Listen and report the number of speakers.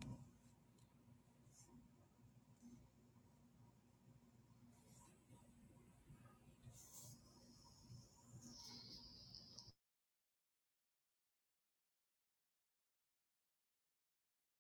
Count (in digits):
0